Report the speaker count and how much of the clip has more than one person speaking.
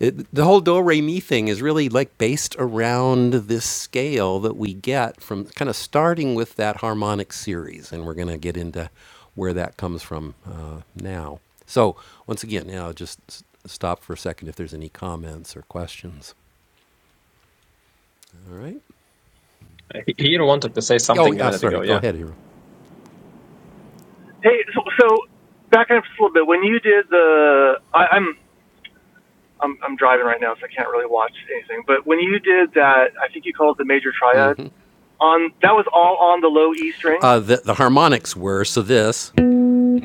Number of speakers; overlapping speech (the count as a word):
three, about 2%